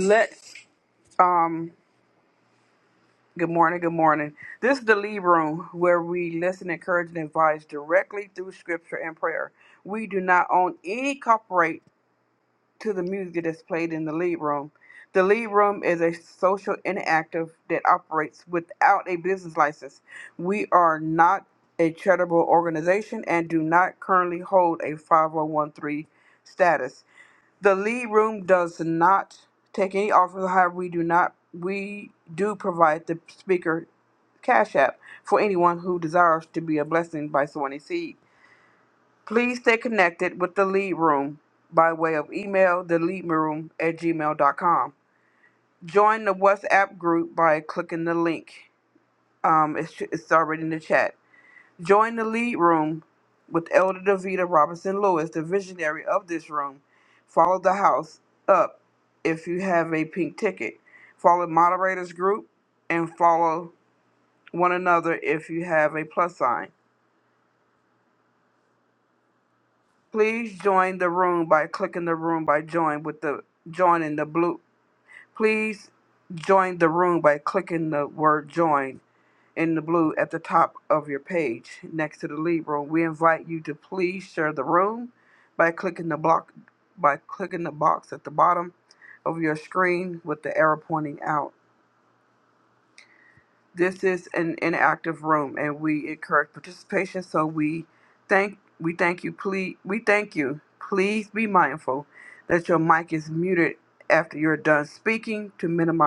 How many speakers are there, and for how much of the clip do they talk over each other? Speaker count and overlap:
one, no overlap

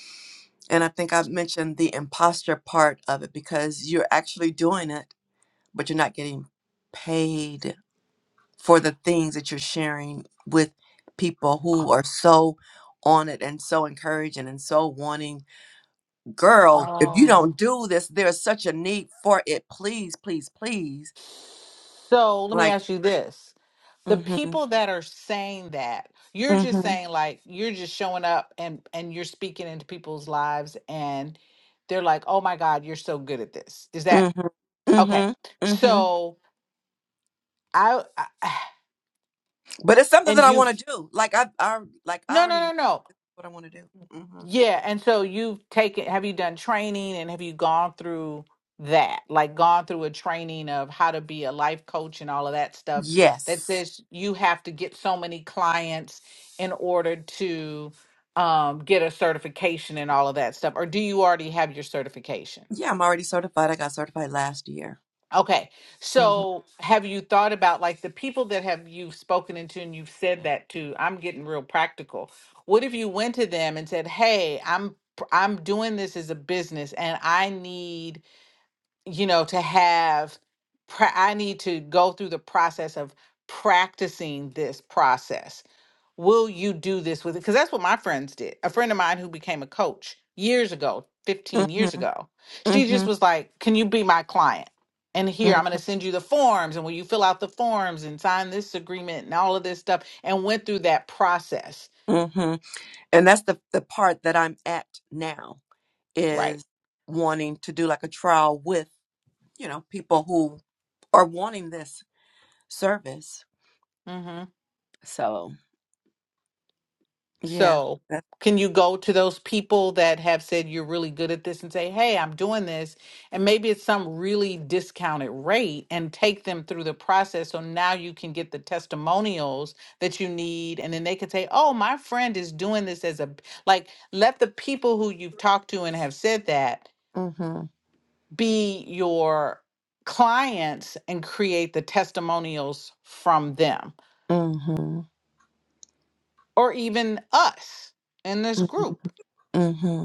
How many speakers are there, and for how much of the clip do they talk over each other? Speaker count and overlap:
two, about 4%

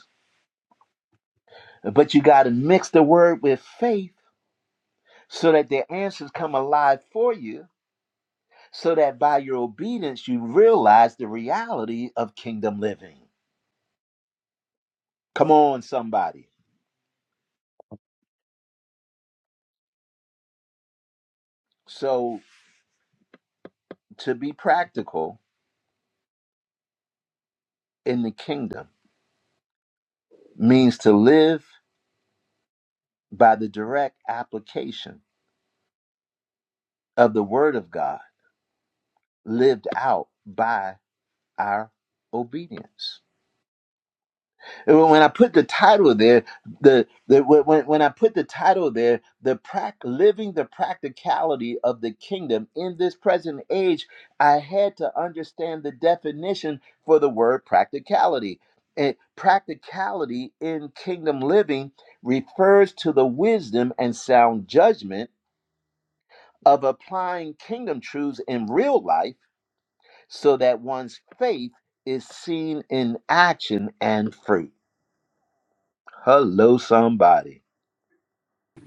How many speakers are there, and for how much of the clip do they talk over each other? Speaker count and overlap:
one, no overlap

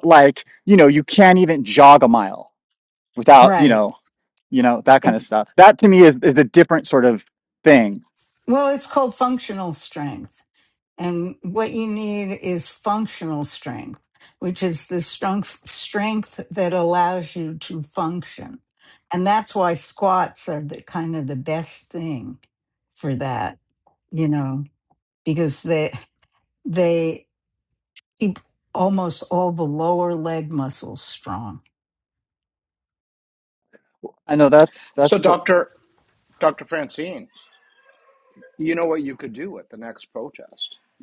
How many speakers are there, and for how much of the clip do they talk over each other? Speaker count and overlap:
three, about 2%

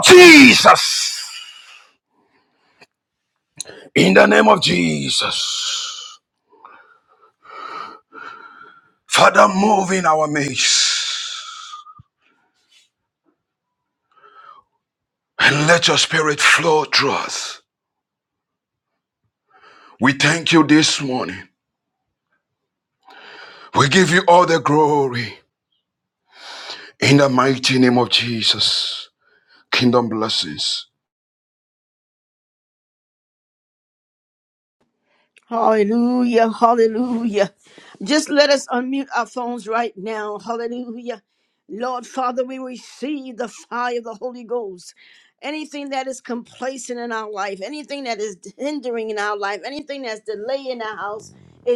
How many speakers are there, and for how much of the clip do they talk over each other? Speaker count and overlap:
two, no overlap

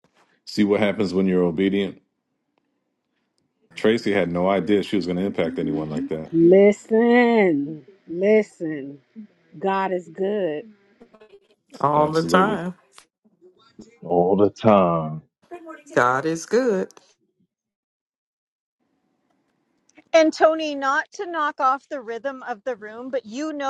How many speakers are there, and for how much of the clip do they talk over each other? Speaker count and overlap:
five, about 3%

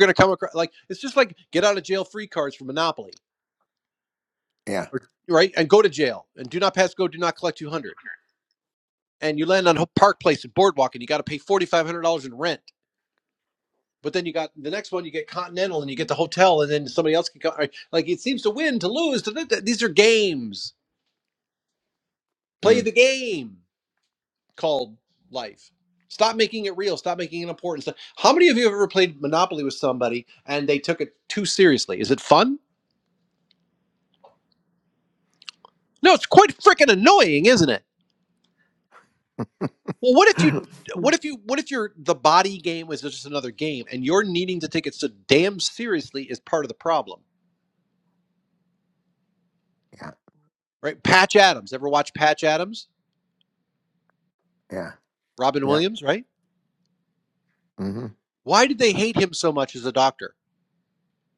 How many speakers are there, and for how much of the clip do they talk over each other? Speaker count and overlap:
two, about 1%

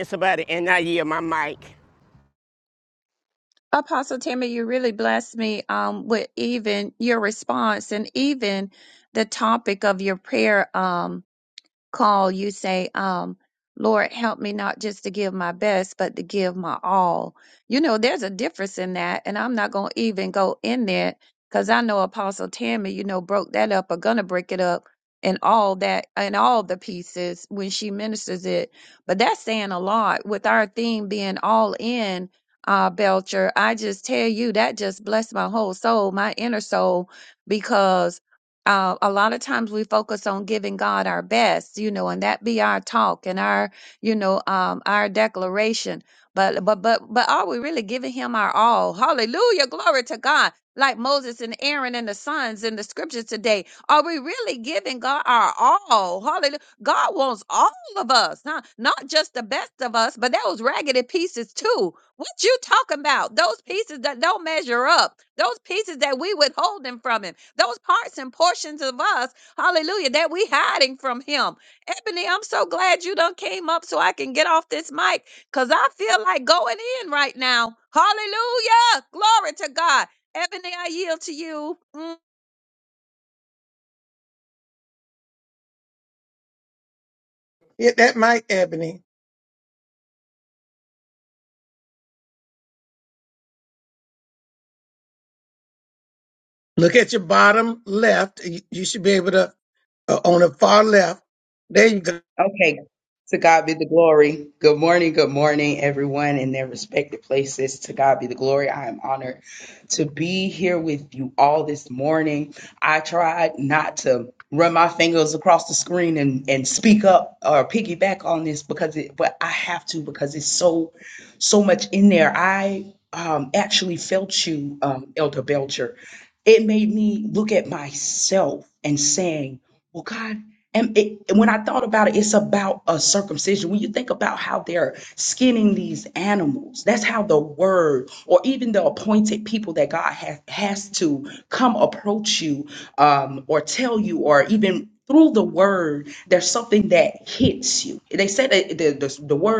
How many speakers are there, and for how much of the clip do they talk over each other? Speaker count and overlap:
four, no overlap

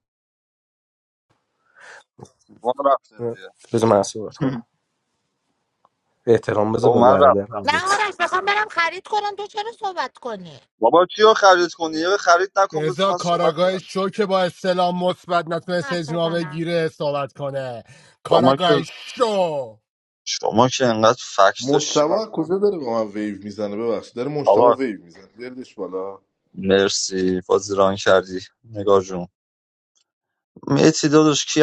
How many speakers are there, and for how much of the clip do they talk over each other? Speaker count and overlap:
five, about 14%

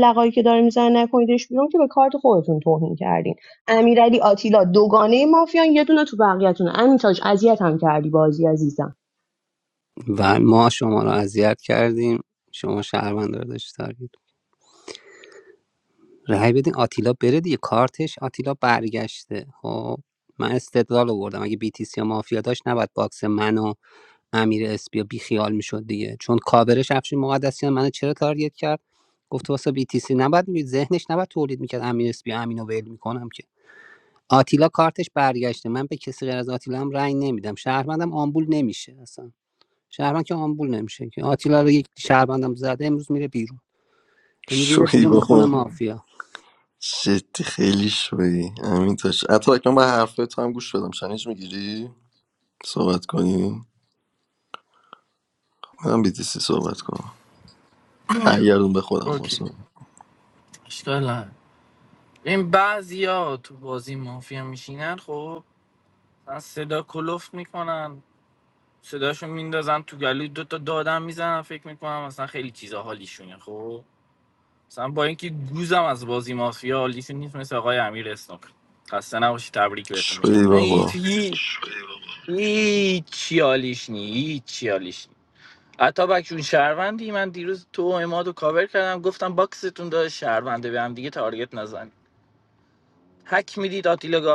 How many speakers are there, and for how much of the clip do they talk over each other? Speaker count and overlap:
four, about 3%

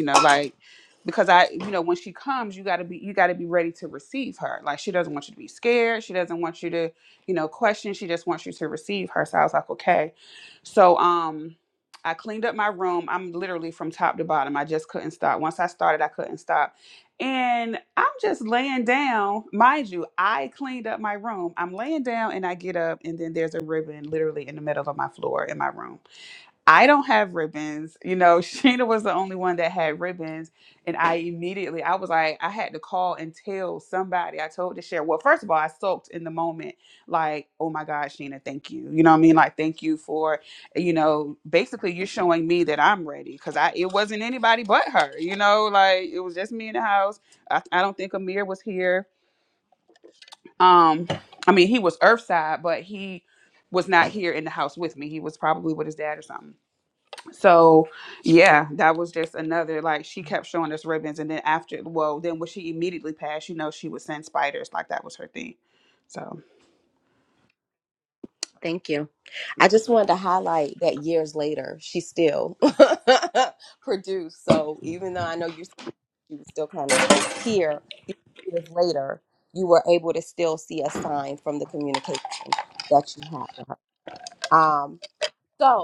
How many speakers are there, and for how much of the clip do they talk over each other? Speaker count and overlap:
two, no overlap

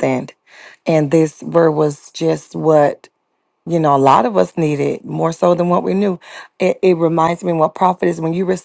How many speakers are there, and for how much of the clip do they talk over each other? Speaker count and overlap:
one, no overlap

